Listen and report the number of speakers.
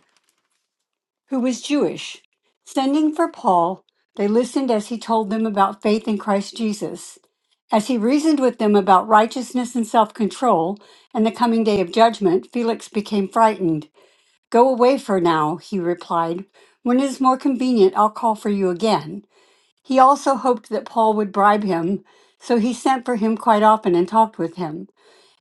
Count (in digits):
1